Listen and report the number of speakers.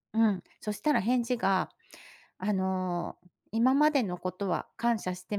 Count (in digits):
1